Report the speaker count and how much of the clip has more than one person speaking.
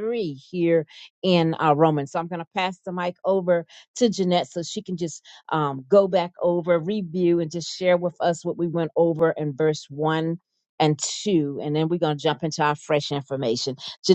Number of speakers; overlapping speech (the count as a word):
one, no overlap